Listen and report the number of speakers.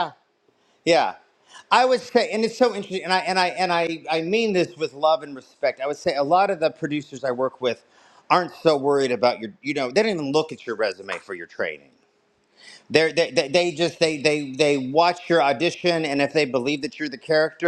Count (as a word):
one